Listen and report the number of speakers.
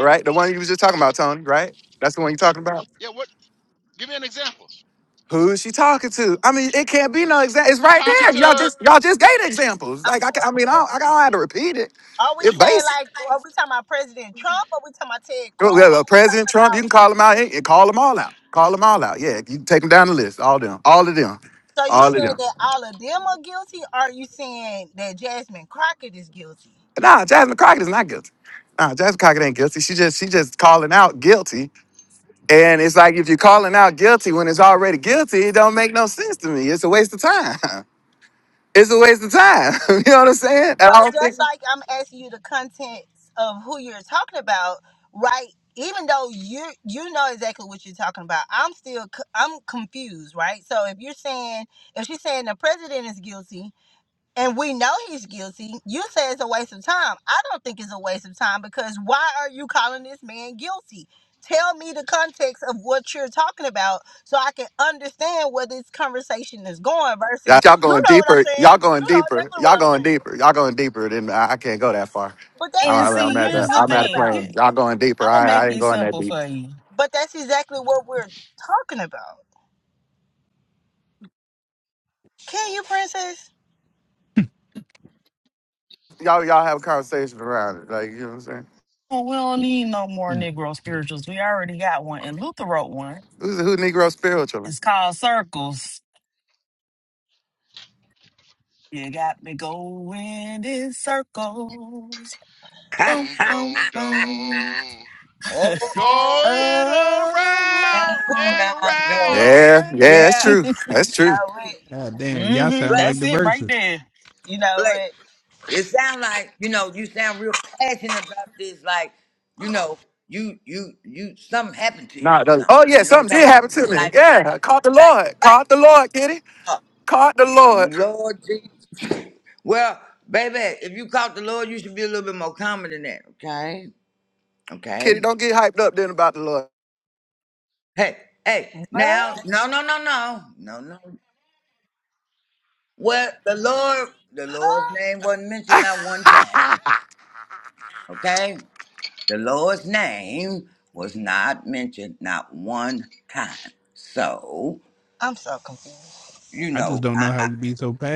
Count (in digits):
6